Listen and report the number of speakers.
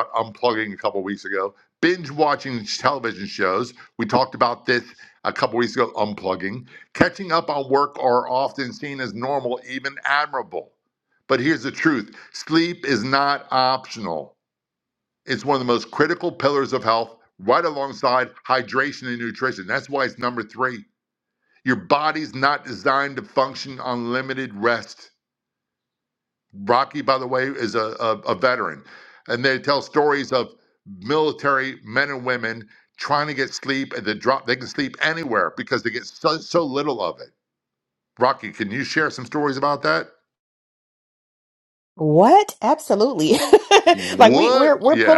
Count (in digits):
2